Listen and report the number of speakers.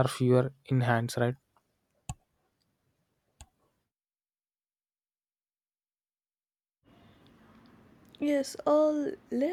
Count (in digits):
2